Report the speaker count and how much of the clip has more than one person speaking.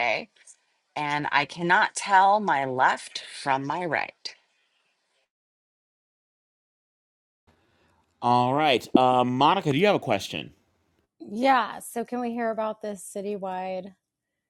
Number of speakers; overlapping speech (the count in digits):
3, no overlap